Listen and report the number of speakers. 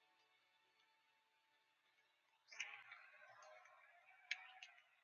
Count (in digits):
0